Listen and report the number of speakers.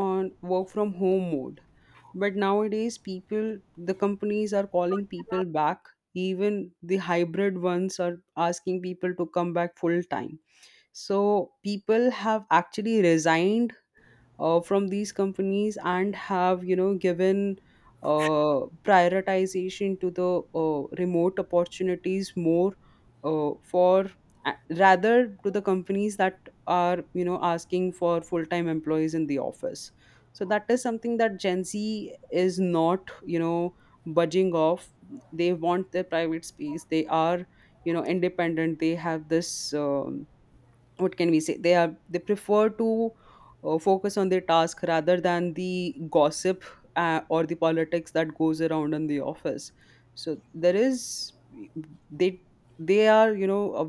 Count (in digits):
1